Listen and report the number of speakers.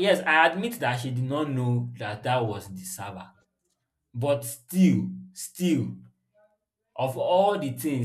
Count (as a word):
one